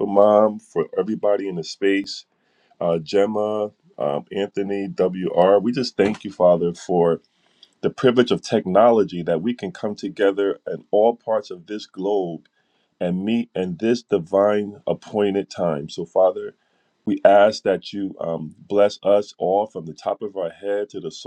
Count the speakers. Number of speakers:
1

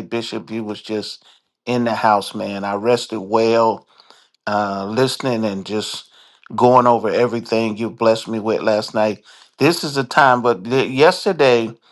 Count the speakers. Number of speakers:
1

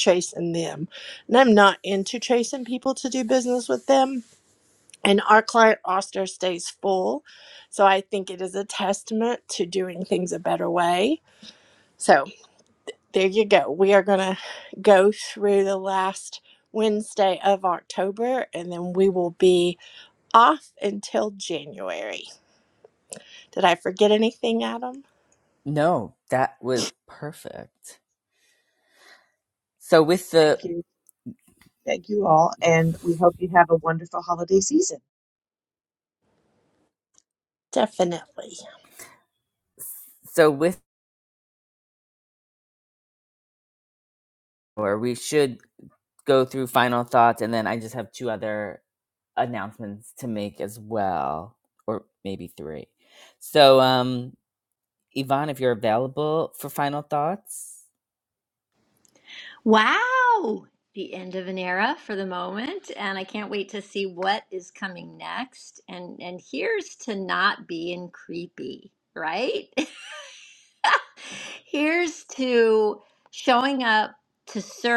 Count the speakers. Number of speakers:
4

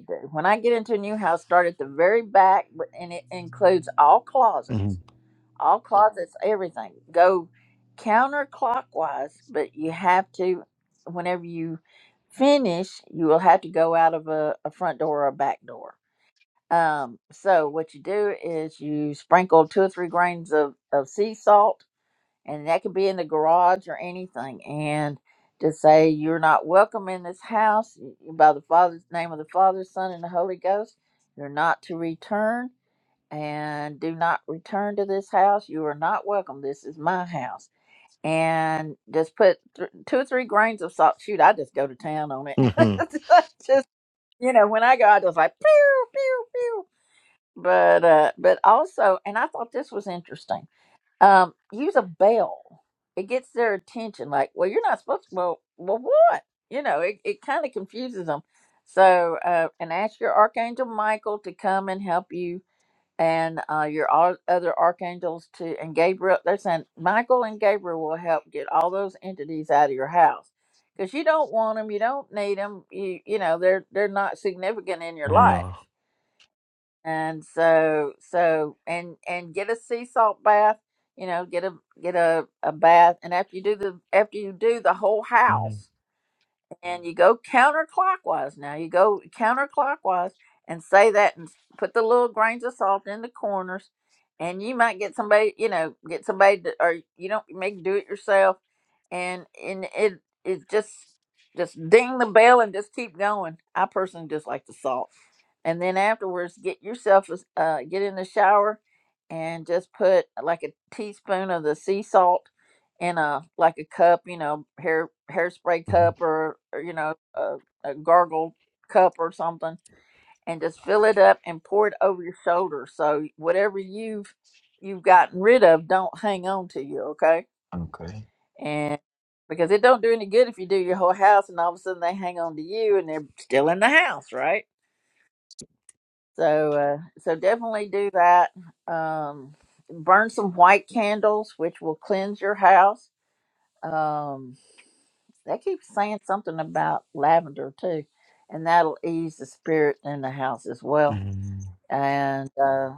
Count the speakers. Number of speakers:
2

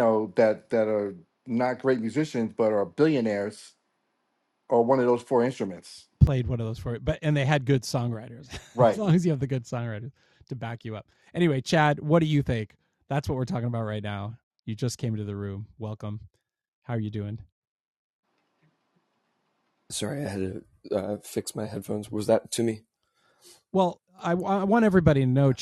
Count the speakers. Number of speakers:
3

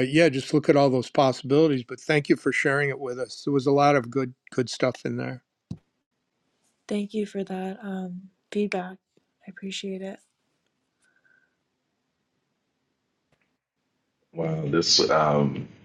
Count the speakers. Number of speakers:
3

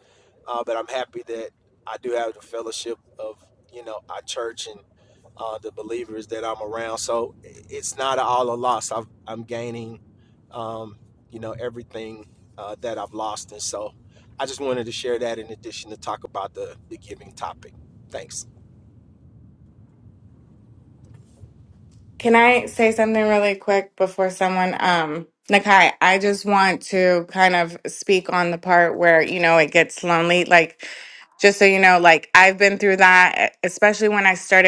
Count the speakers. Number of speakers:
2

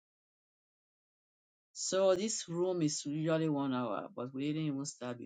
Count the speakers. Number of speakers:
1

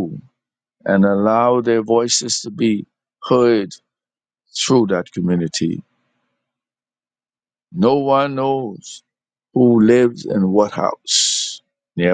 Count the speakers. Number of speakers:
1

